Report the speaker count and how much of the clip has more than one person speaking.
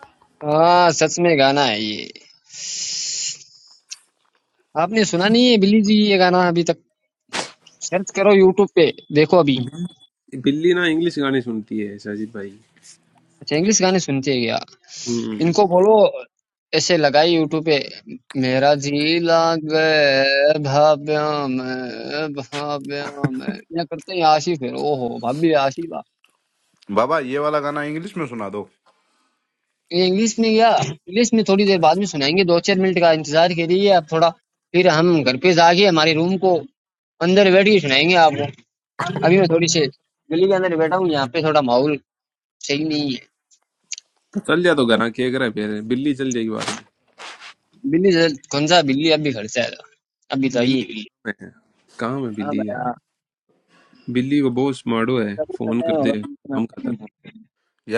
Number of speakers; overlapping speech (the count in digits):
3, about 1%